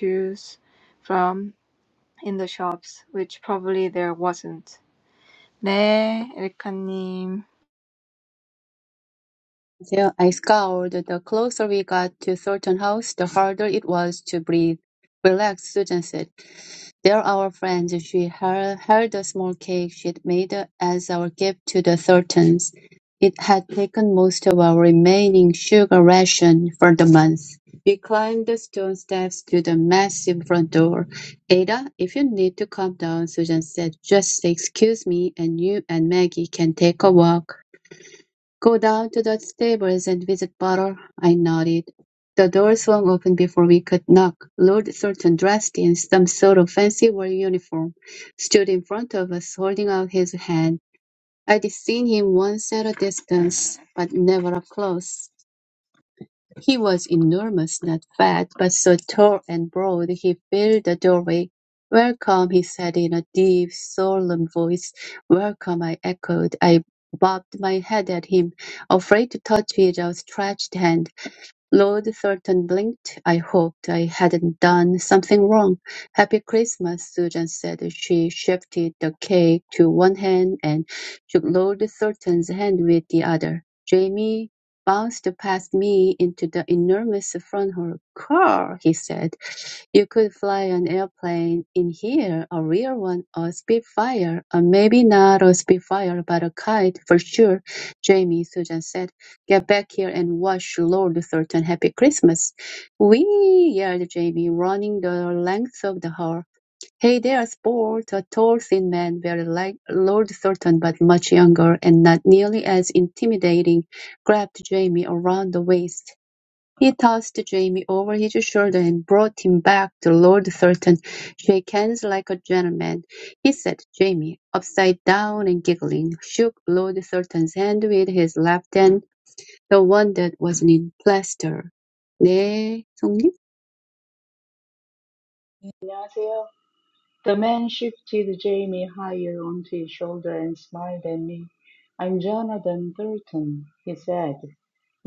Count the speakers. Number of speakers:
3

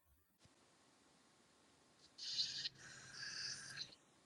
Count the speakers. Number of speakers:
0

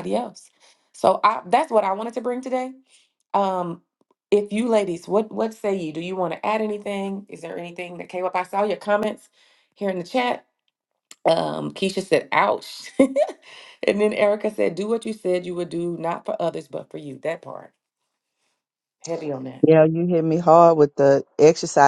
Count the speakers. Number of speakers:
2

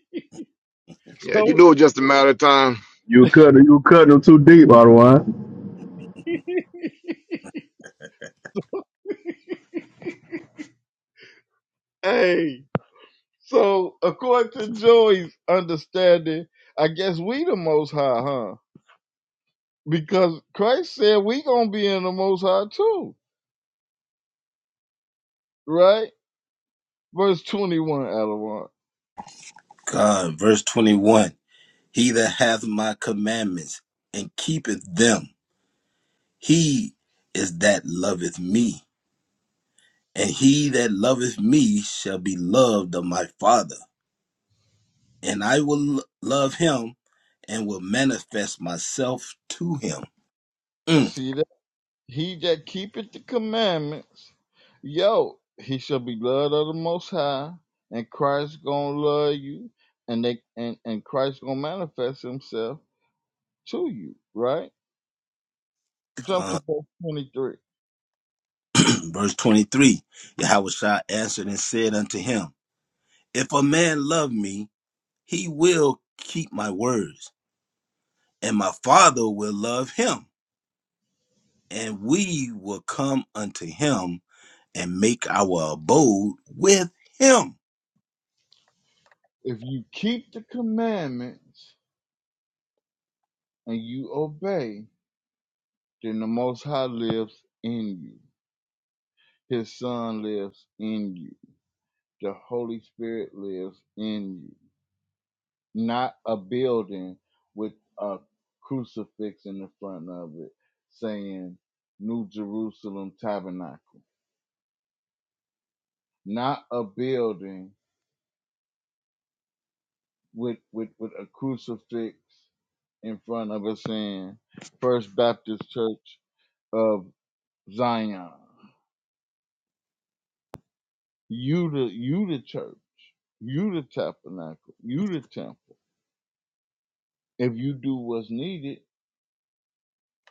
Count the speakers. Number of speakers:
4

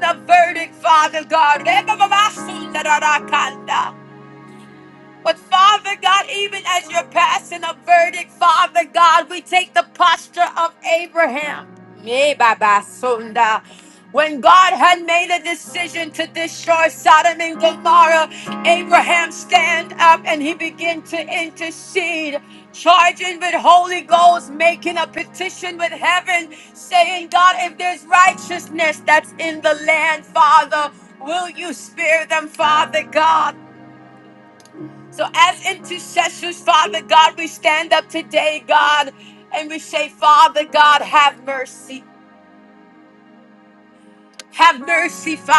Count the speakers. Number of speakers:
1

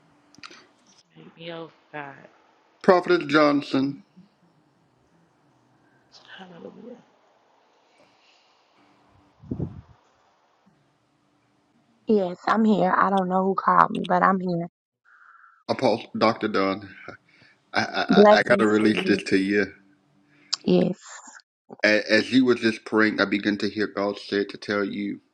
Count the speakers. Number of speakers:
3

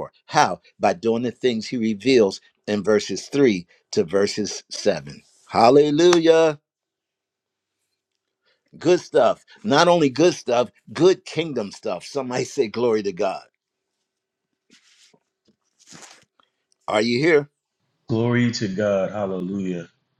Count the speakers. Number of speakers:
2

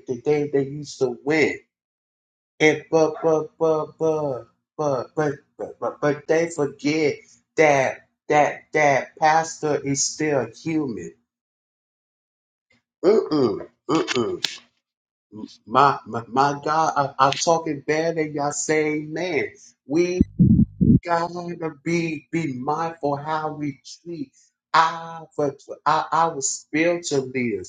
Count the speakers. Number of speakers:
1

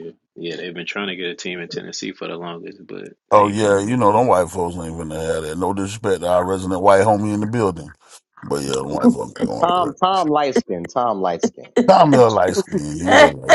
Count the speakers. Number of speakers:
3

